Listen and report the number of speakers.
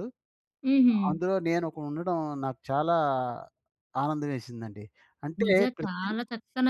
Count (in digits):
2